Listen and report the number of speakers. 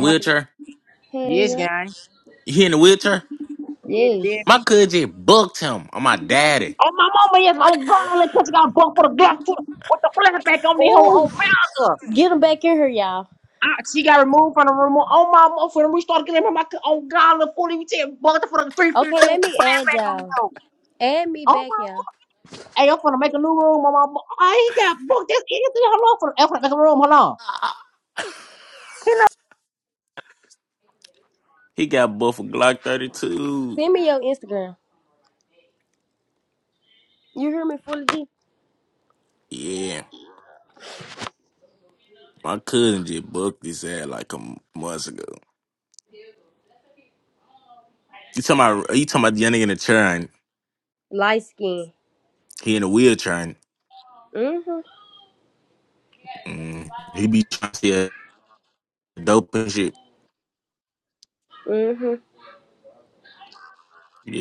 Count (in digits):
3